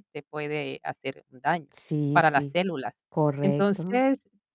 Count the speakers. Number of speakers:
2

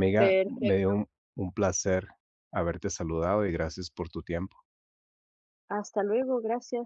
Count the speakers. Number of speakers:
2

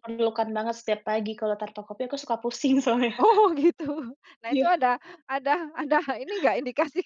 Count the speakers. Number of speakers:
2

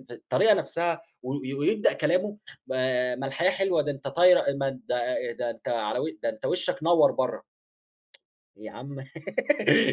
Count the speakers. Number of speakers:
1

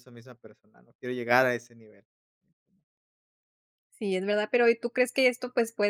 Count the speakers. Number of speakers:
2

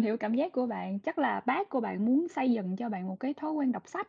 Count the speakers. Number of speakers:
1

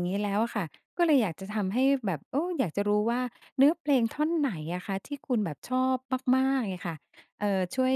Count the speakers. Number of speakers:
1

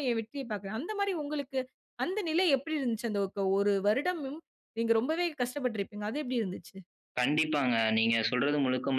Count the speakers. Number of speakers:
2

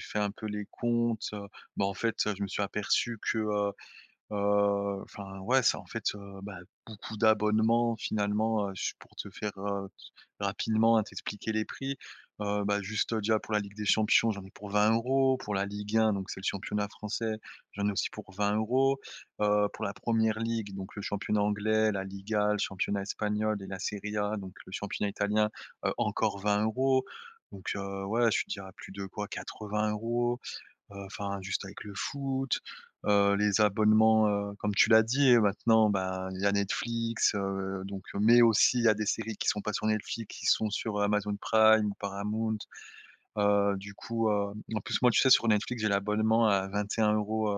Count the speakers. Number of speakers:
1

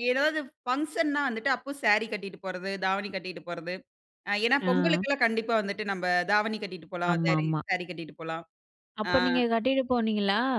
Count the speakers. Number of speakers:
2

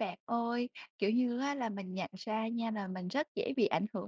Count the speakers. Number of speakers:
1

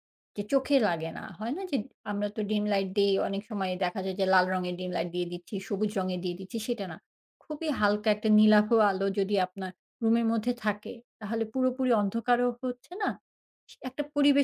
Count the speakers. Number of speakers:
1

